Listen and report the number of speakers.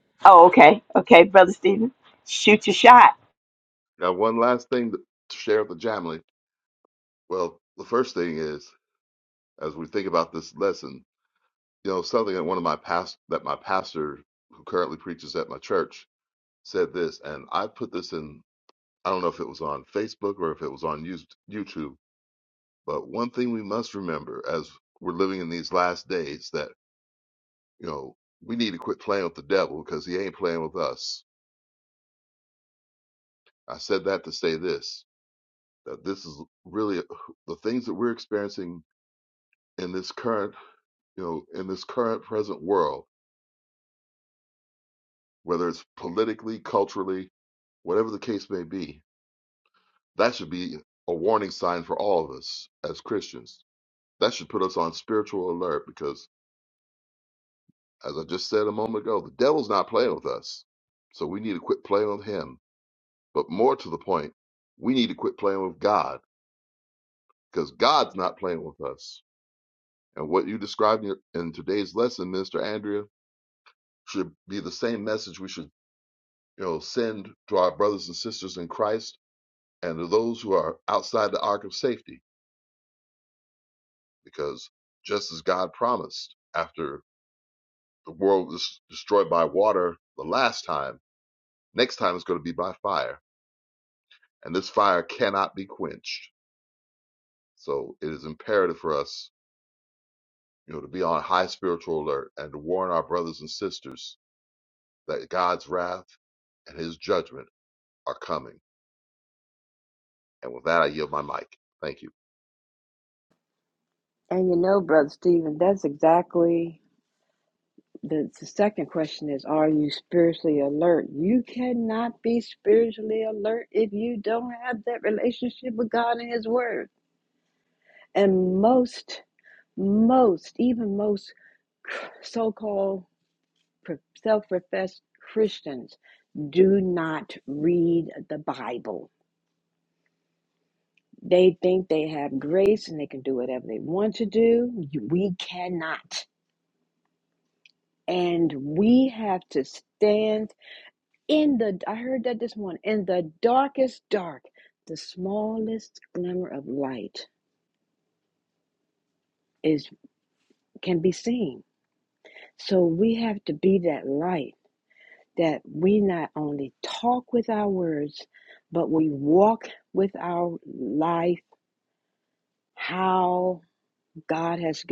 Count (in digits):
3